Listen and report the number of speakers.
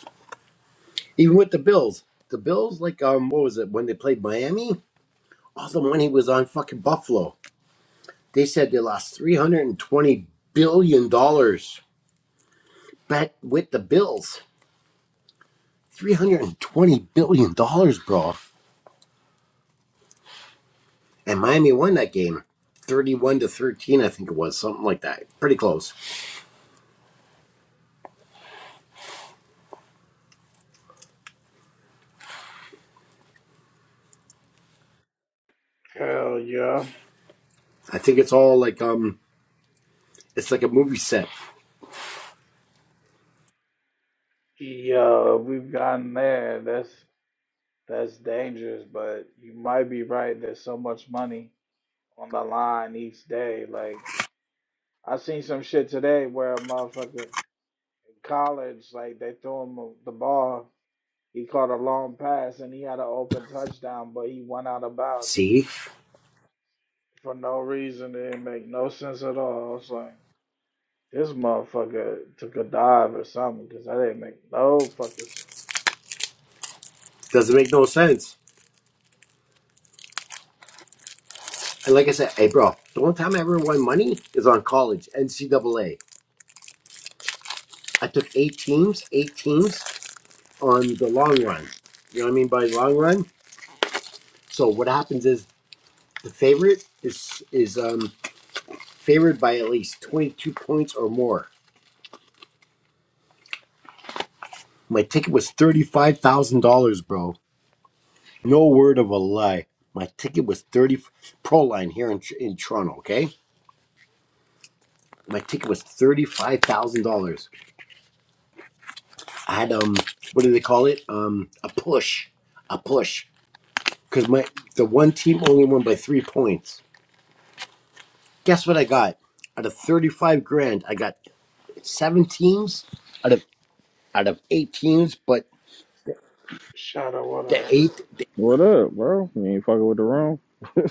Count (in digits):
3